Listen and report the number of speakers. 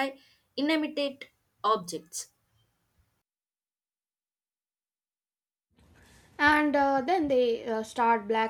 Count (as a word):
two